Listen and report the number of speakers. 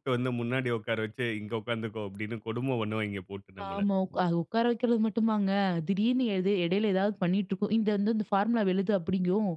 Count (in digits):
2